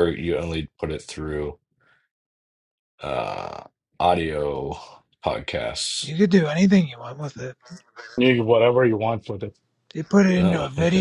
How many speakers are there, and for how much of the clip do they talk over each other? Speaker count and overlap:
three, about 7%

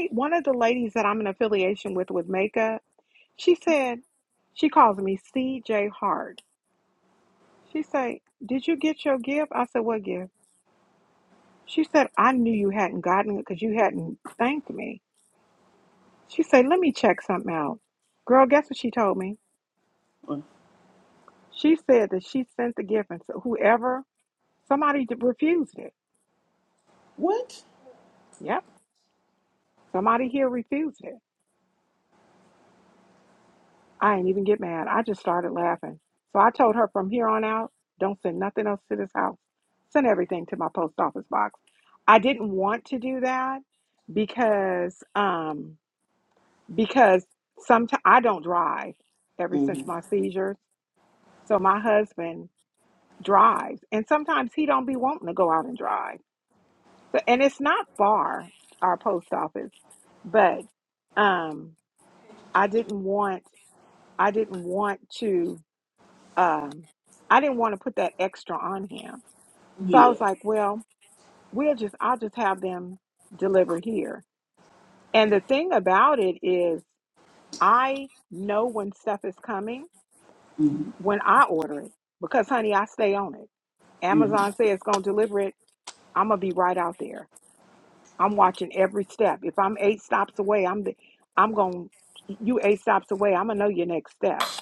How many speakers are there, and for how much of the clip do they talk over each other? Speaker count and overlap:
two, about 1%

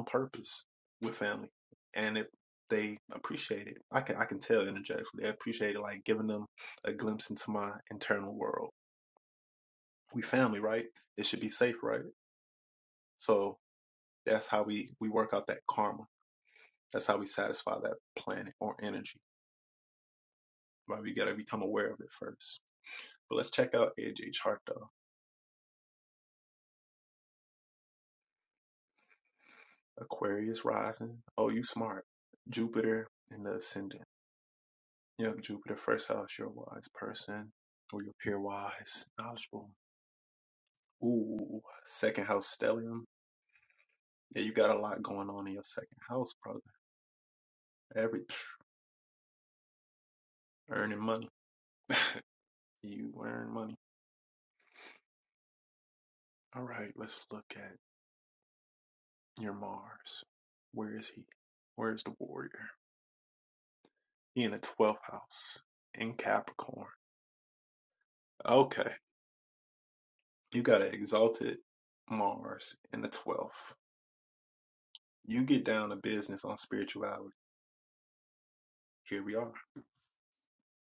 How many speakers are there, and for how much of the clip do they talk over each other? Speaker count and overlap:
one, no overlap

